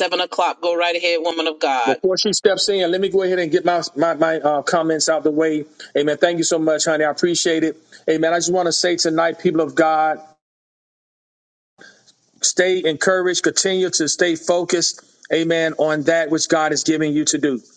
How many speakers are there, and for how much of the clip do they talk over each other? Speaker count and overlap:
2, about 1%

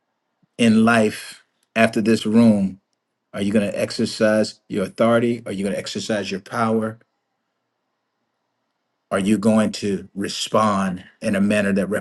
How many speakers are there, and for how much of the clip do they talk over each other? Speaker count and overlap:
1, no overlap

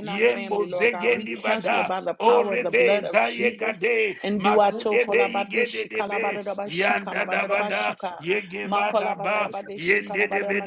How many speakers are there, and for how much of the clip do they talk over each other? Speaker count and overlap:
2, about 72%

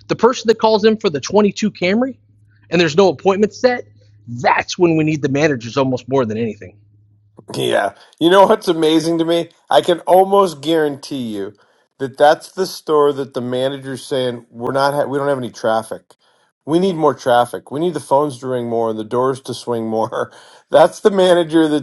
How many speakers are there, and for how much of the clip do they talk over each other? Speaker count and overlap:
2, no overlap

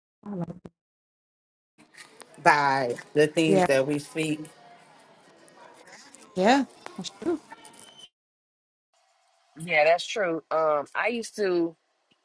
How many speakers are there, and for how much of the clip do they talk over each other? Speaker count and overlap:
3, about 2%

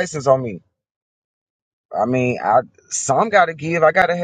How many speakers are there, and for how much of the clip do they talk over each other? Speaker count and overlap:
1, no overlap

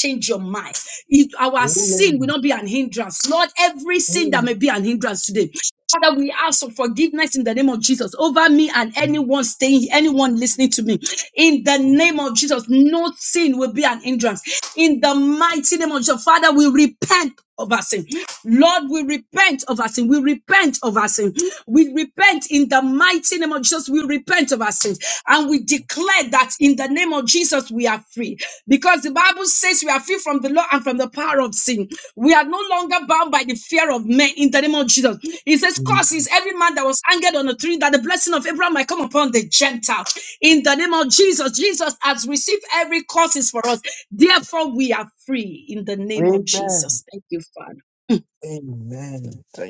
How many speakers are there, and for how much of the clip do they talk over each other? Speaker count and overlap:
2, about 4%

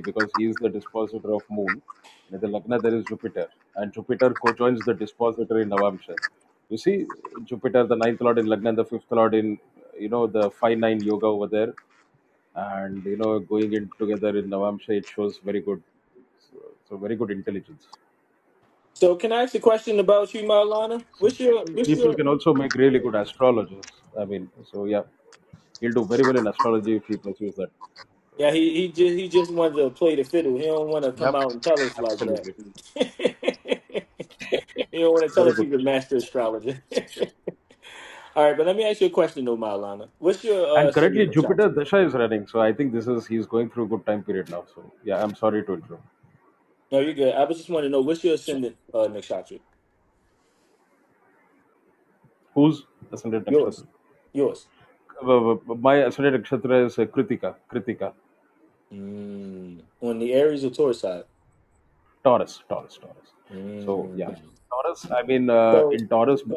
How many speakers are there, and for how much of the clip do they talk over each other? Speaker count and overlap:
2, about 5%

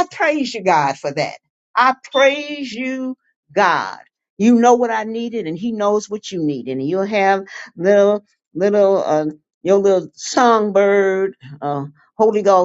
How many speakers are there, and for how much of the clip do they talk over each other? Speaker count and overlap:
1, no overlap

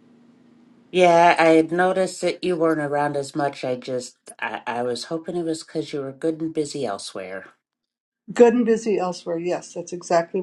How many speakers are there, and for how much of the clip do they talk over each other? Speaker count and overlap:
2, no overlap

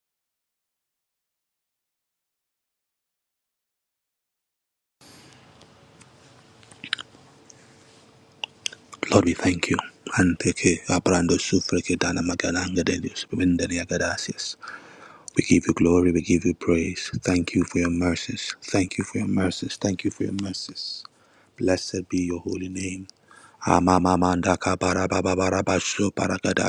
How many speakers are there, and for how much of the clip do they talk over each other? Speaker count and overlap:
1, no overlap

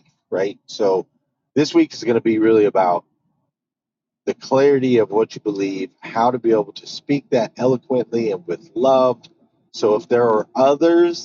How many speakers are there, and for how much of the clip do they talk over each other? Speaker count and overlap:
1, no overlap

